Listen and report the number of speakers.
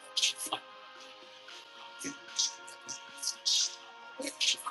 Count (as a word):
zero